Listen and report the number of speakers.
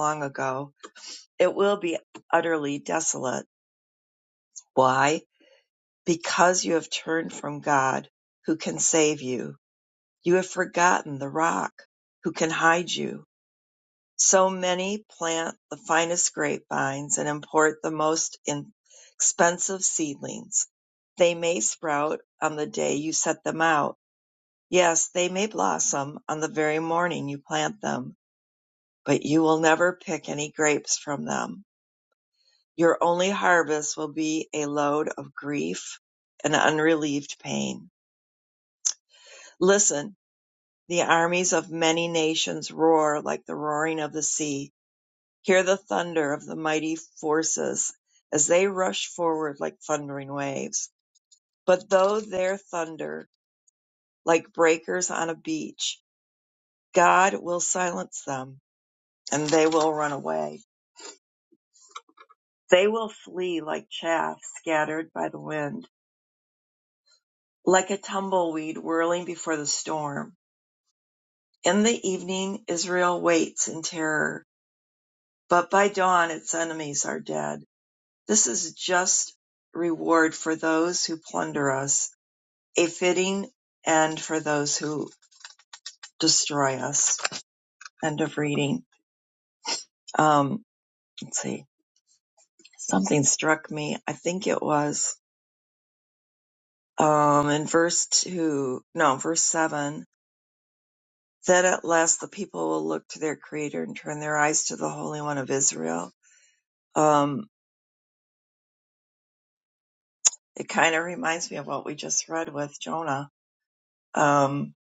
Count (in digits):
1